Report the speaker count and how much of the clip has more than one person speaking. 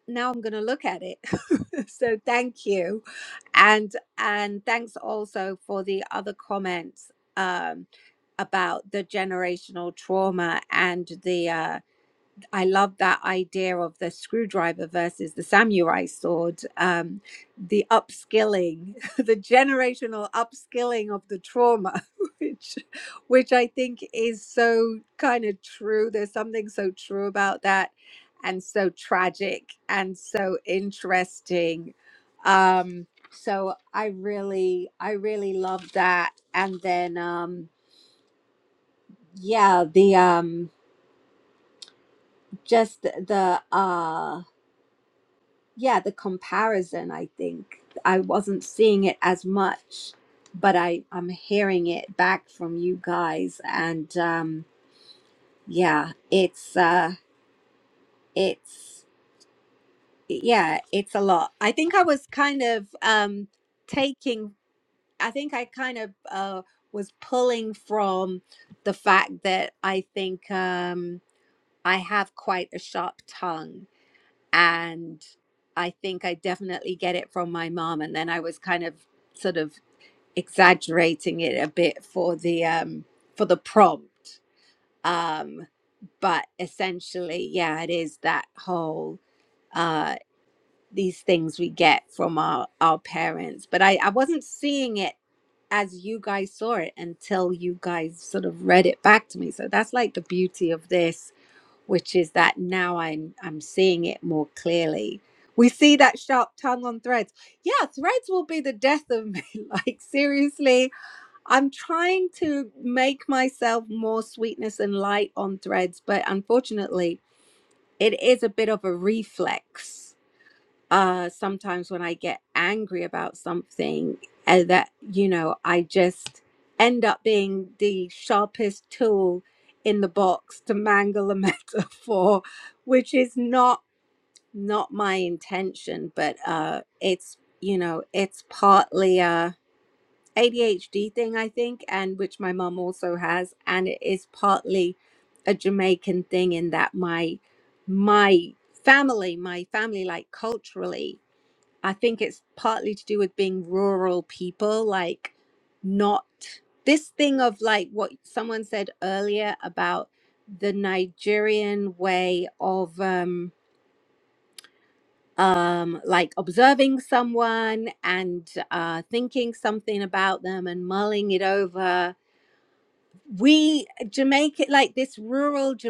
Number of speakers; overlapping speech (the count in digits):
1, no overlap